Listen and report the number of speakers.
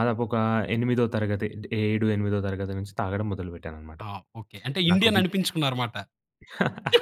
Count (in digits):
2